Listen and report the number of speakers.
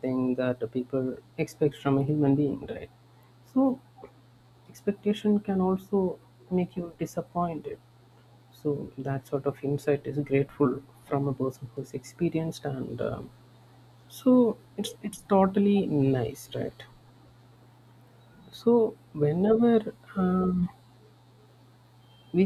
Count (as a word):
one